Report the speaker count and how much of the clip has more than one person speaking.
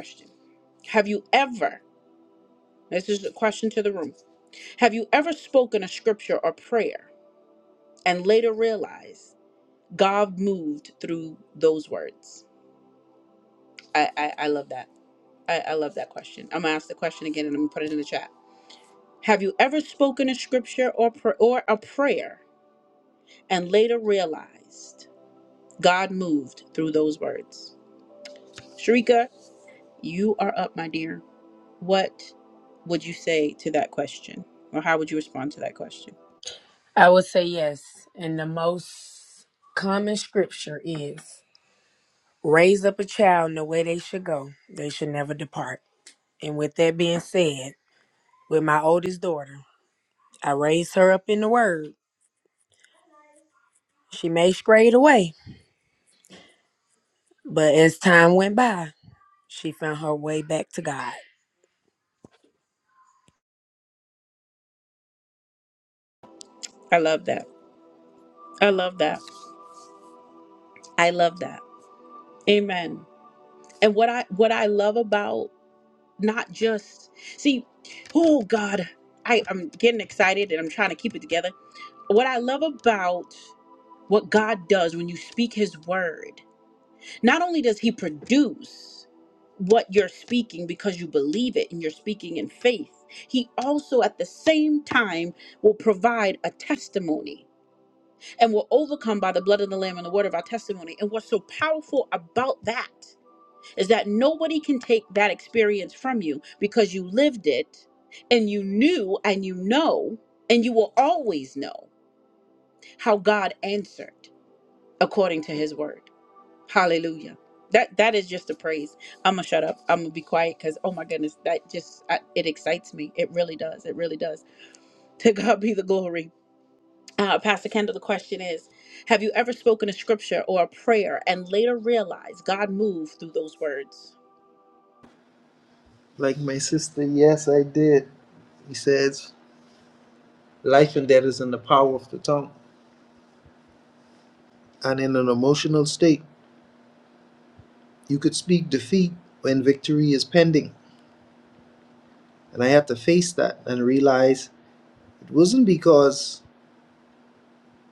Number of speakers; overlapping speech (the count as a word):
three, no overlap